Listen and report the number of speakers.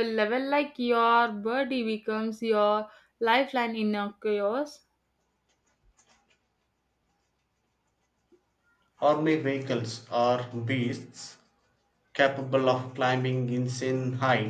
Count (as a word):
two